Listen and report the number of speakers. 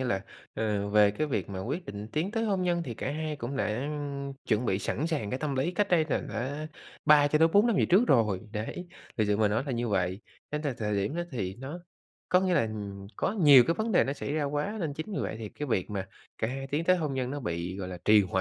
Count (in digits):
1